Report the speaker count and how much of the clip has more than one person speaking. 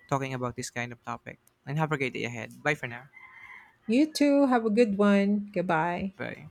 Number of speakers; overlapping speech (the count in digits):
2, no overlap